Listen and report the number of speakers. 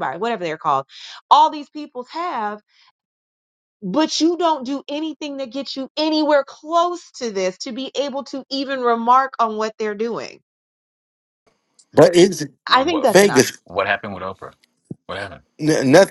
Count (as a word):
three